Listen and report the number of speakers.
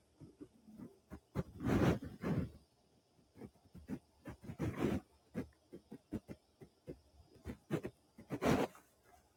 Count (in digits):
0